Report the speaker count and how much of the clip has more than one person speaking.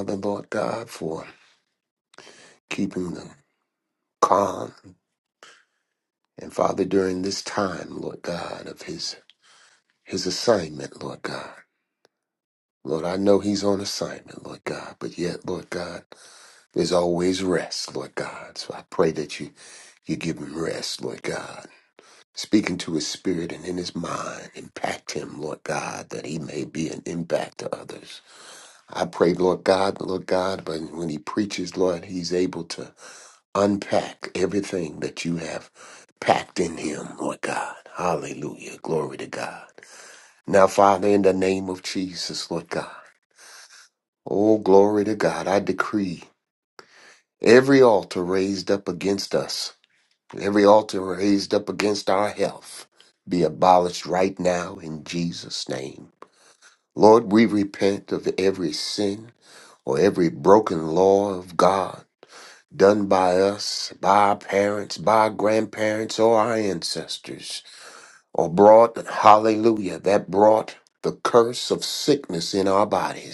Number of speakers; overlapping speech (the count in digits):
1, no overlap